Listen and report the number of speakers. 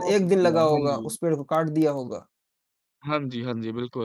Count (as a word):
two